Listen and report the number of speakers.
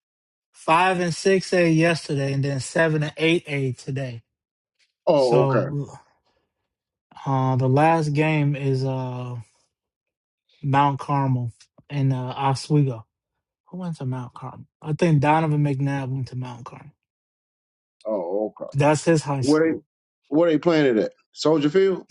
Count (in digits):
2